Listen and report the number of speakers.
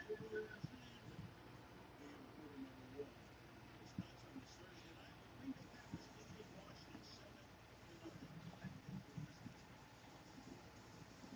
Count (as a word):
zero